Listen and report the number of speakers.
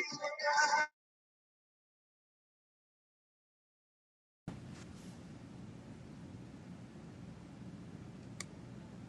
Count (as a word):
zero